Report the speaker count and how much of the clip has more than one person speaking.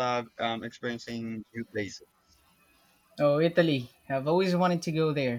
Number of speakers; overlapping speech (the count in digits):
2, no overlap